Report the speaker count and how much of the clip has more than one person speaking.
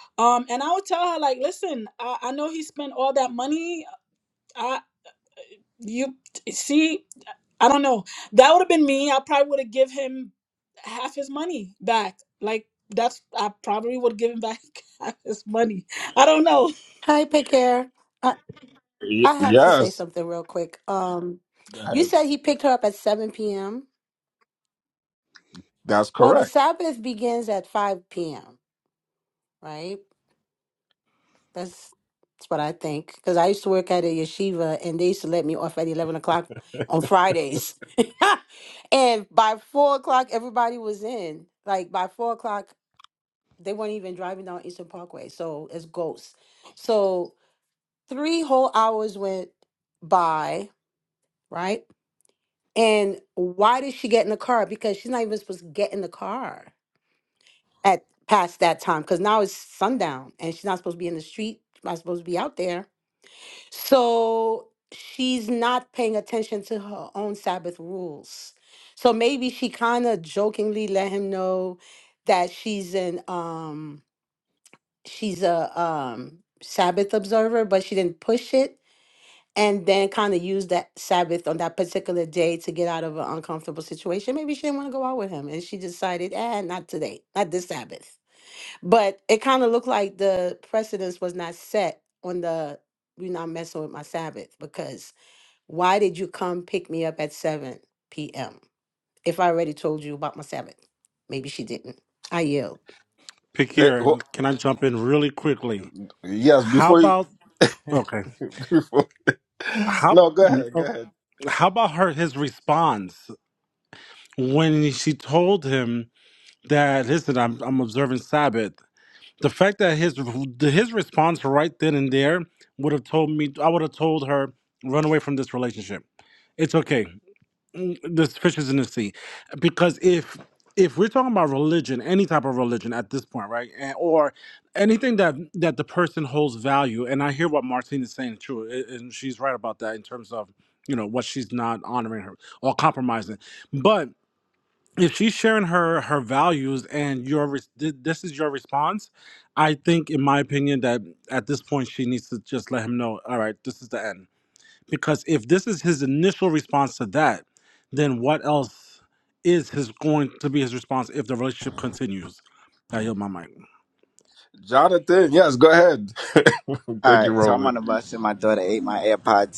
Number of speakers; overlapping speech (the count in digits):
5, about 2%